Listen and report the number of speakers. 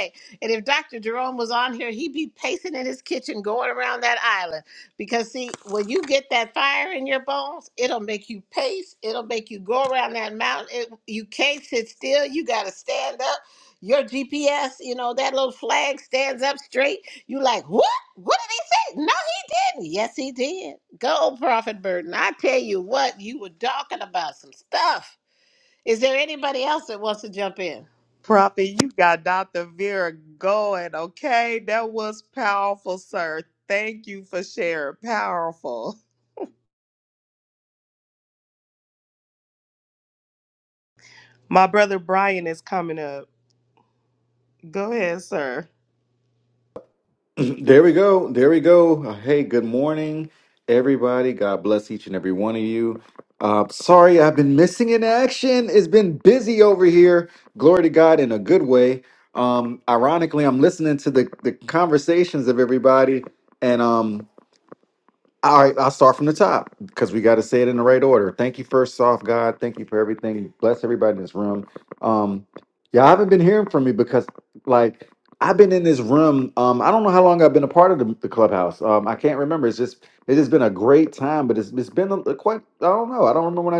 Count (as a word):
three